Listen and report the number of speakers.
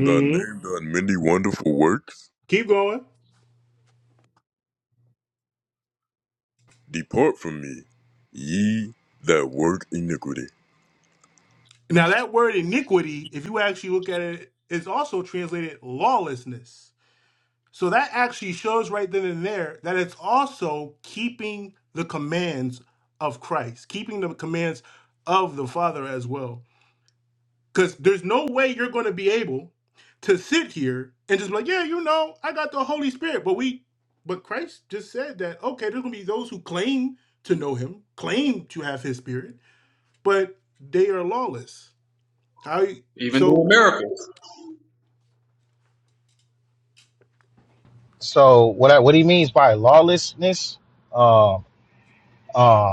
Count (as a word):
four